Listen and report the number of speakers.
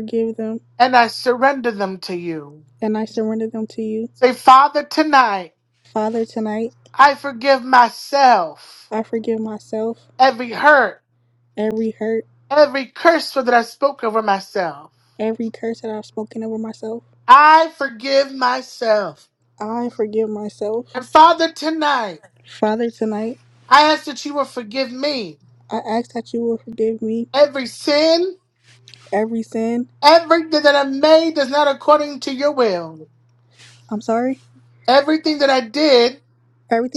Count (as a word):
two